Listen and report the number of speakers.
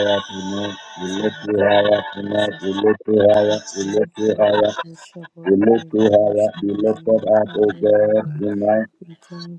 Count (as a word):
two